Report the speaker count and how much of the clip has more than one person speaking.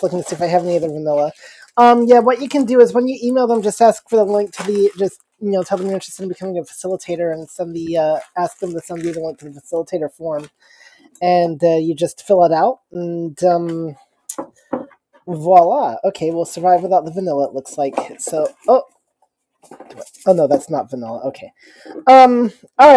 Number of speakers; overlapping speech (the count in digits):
1, no overlap